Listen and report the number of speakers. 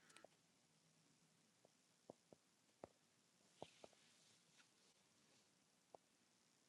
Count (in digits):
0